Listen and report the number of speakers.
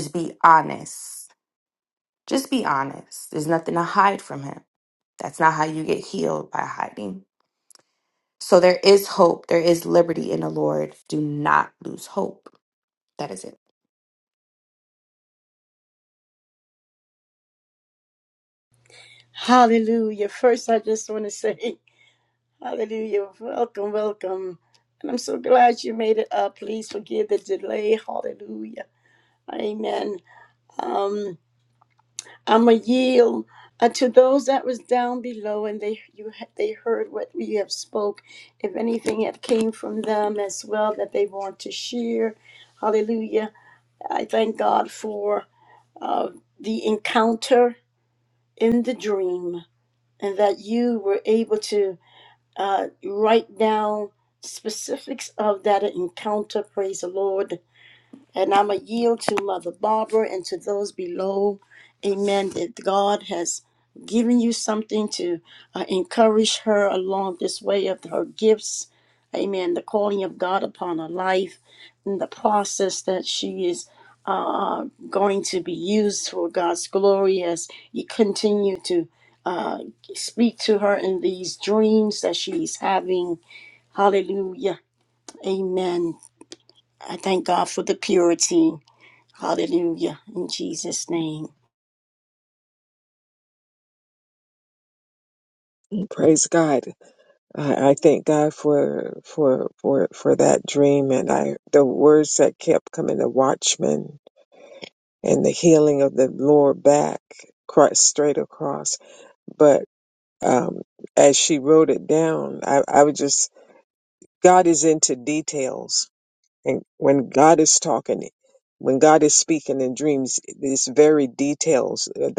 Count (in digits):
3